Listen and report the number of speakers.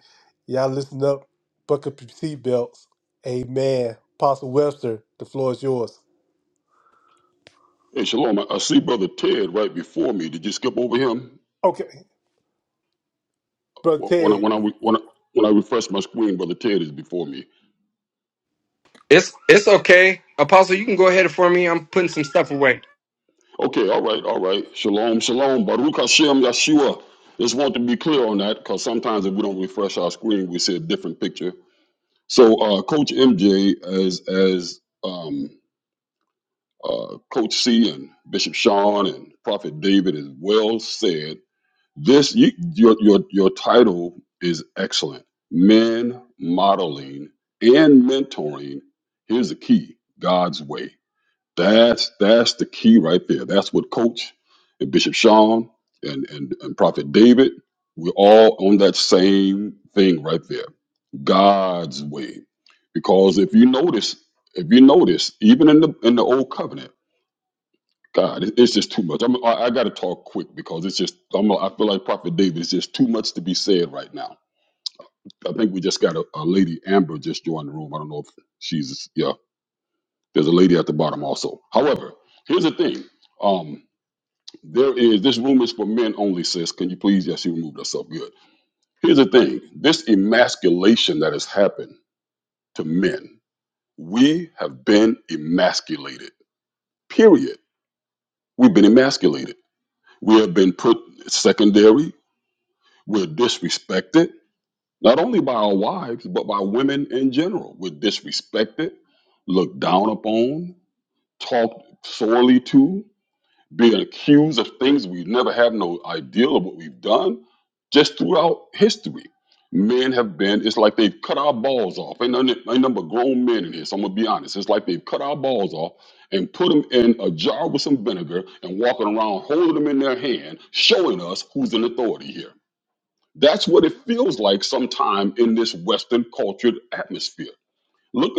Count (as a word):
three